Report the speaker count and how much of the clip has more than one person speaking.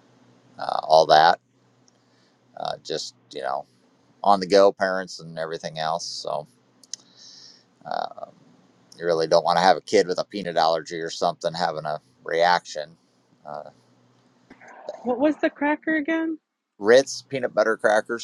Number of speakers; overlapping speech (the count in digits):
2, no overlap